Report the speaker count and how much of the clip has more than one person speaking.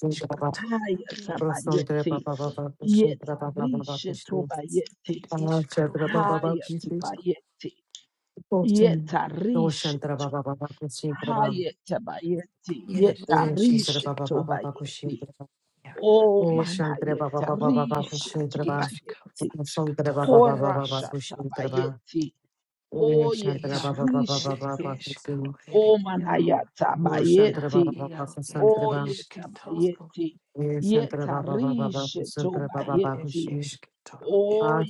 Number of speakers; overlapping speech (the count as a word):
two, about 42%